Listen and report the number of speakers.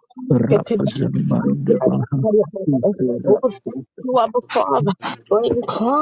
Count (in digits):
2